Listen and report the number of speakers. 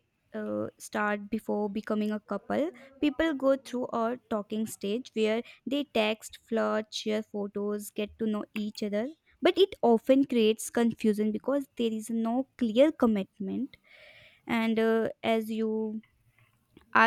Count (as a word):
one